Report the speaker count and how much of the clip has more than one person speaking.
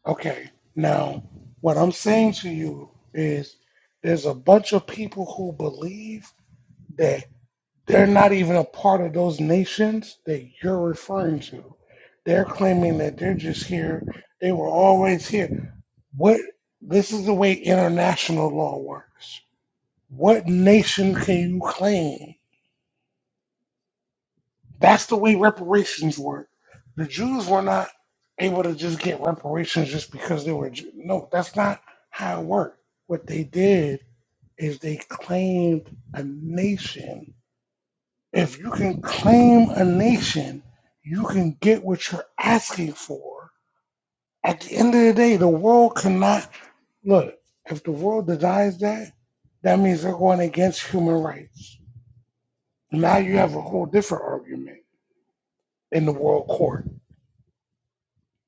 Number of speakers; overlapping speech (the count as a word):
one, no overlap